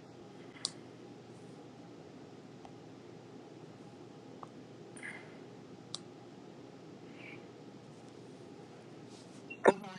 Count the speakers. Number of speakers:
0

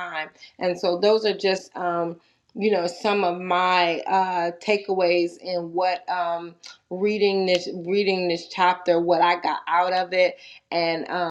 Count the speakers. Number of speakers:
1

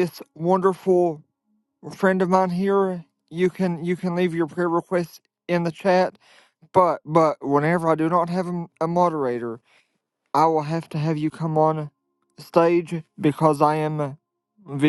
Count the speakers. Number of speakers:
1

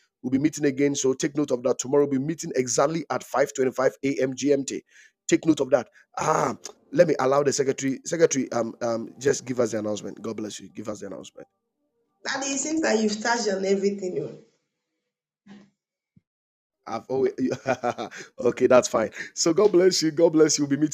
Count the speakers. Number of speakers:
2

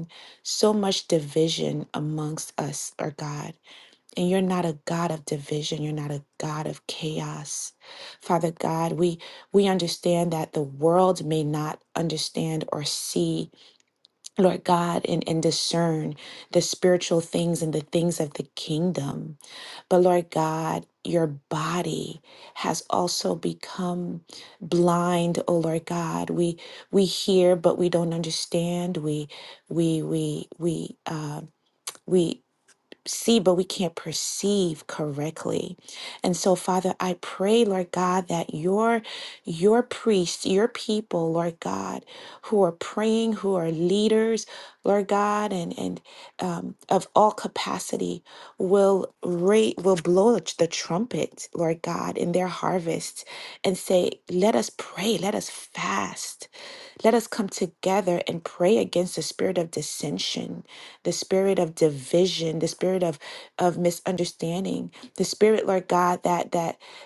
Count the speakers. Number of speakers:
1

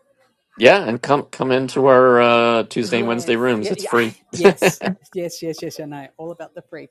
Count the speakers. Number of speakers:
2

